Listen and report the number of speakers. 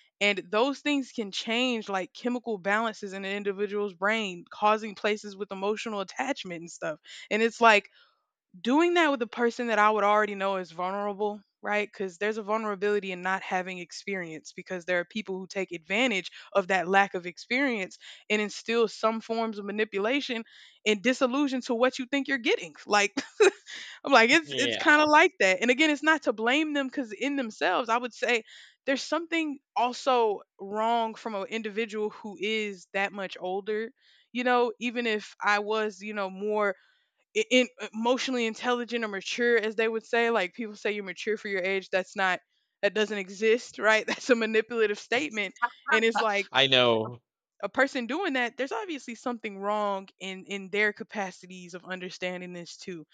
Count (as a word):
two